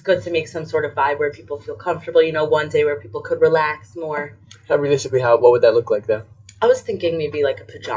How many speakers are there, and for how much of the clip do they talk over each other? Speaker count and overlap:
2, no overlap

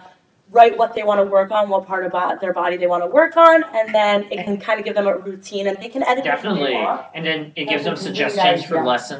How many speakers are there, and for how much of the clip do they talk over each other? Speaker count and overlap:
2, about 23%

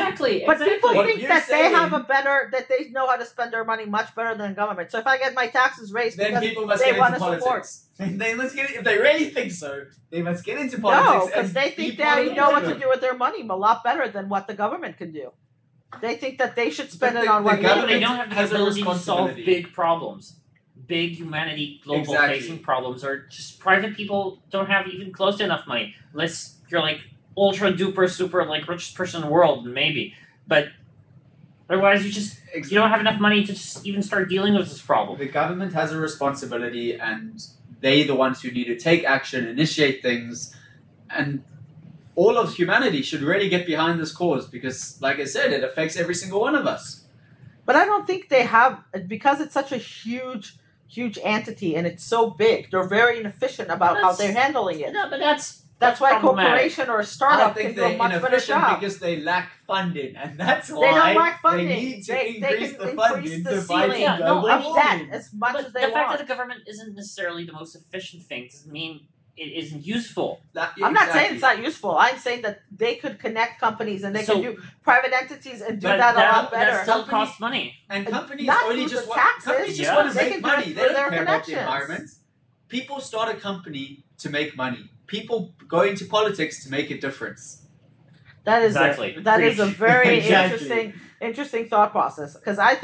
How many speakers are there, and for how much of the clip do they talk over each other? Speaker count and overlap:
3, about 27%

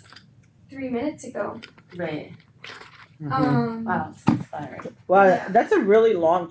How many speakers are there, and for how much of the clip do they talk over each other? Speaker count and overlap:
3, about 7%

